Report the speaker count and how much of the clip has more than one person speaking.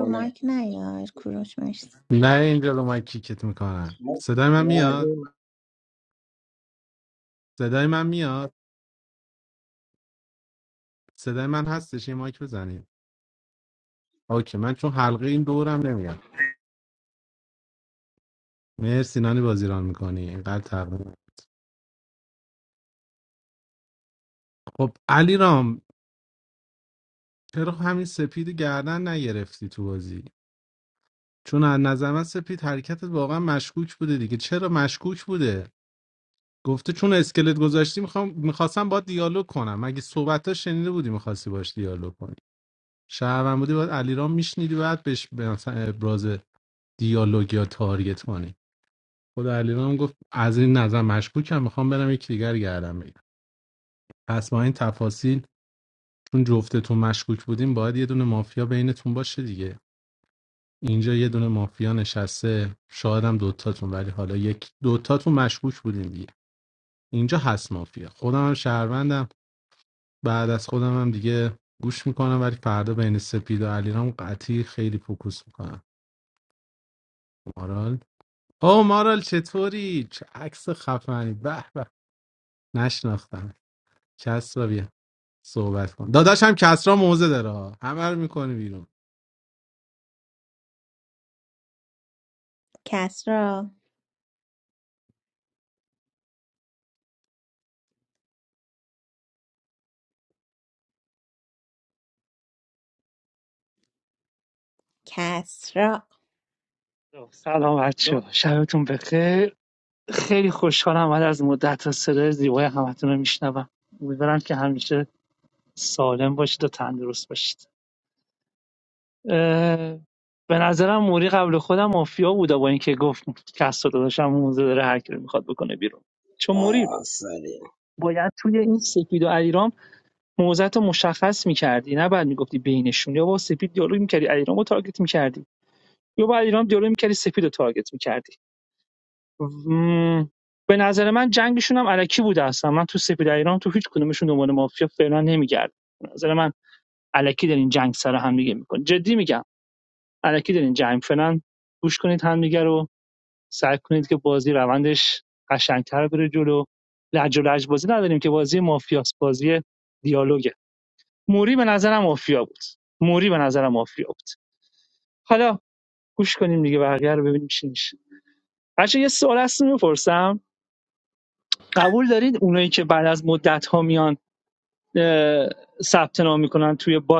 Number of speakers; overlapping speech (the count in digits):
4, about 1%